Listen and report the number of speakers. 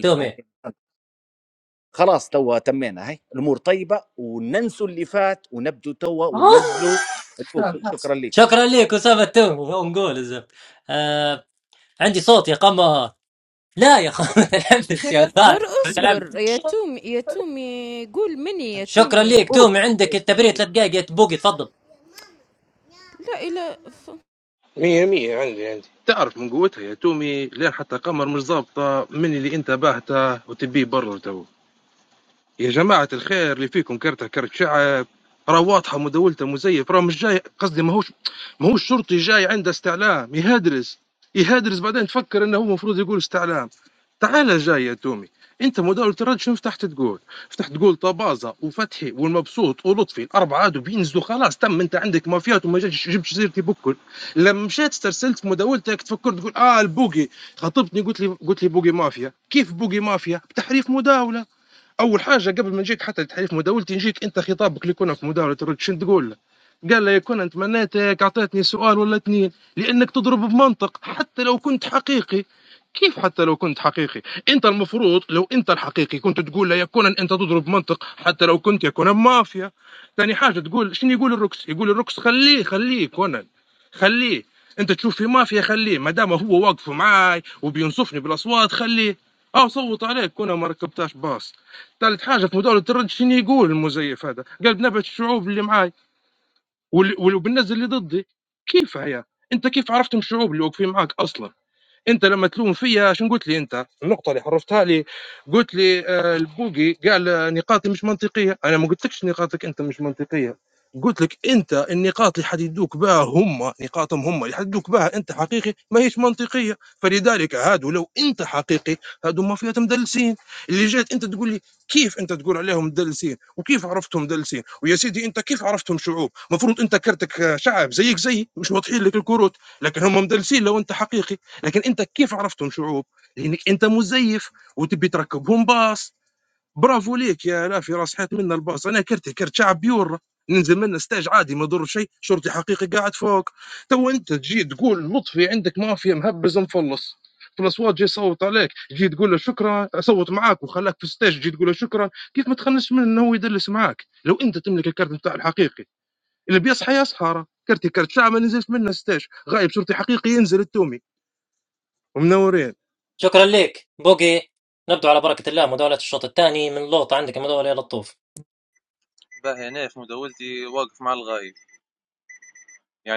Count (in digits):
5